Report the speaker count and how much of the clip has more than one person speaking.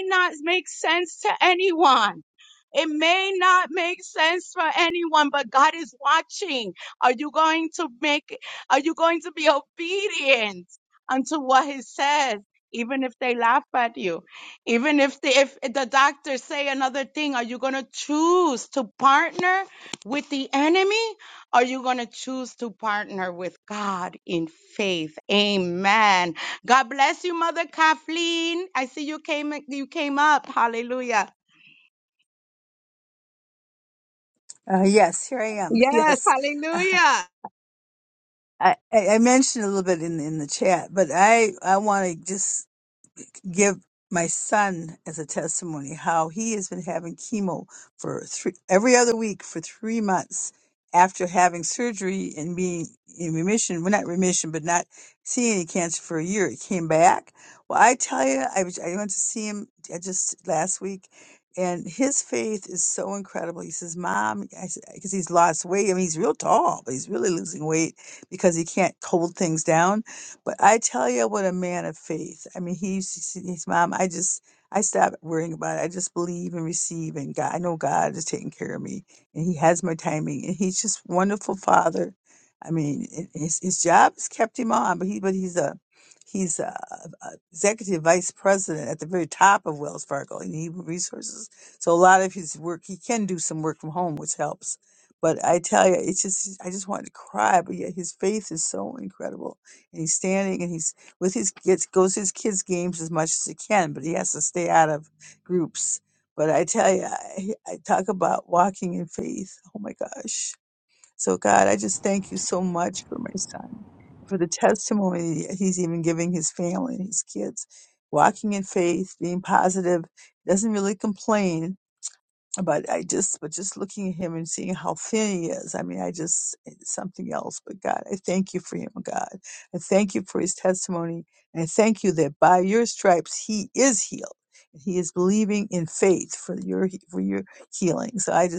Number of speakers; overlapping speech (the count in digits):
2, under 1%